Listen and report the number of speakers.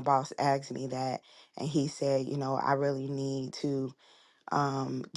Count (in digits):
1